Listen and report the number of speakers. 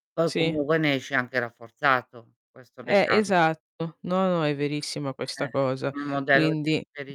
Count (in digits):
2